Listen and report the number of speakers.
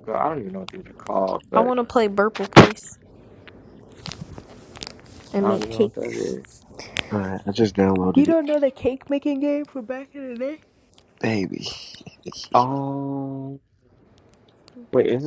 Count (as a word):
three